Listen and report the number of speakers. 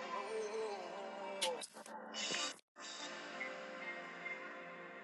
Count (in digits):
0